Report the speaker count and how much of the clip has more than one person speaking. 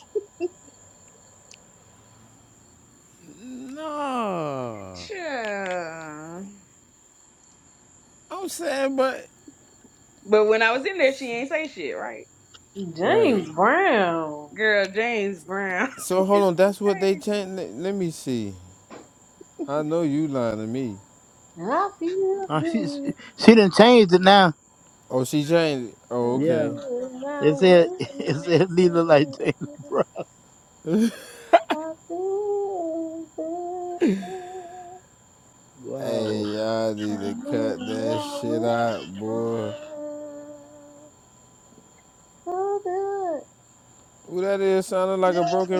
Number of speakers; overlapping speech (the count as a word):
four, about 13%